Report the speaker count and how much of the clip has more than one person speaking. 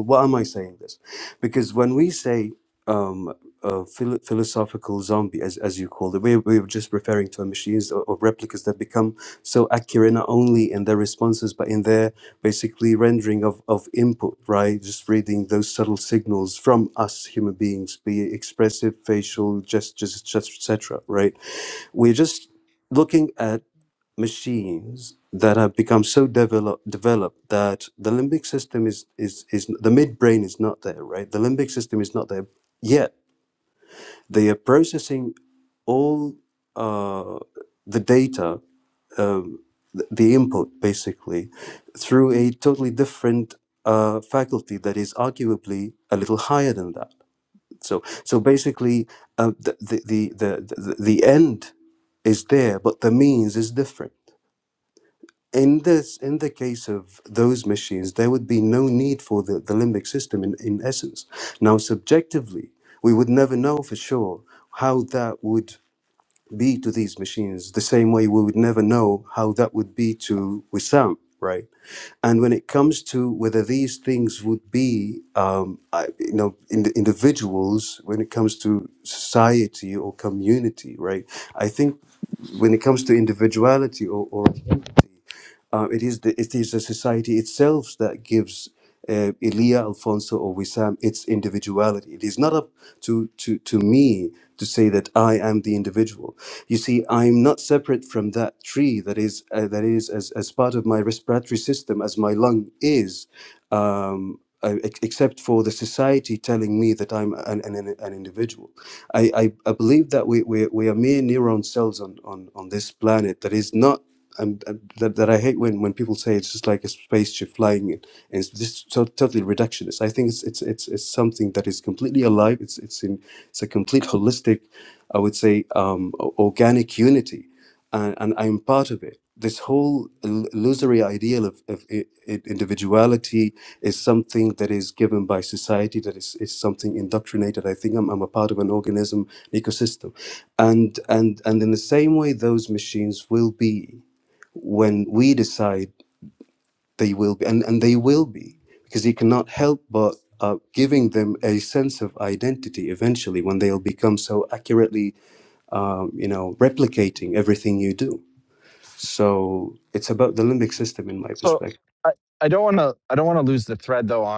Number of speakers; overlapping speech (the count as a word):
two, under 1%